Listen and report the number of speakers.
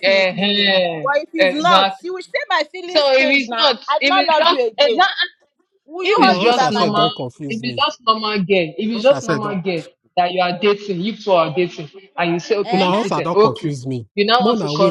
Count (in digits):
3